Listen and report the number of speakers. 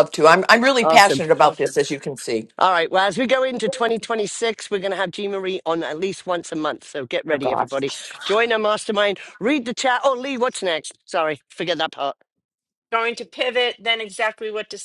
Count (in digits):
3